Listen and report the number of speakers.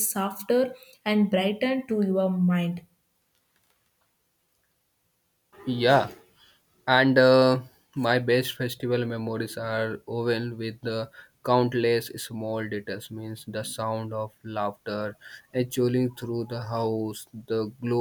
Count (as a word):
two